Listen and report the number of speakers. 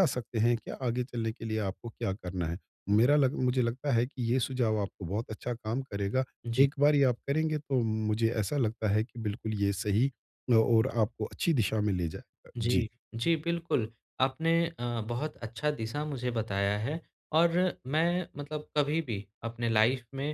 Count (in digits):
2